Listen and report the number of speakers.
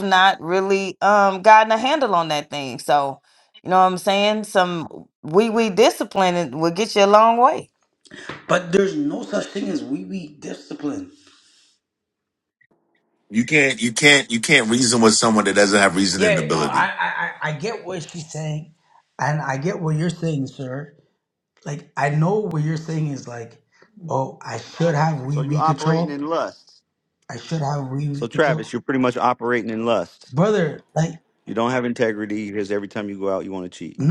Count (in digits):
4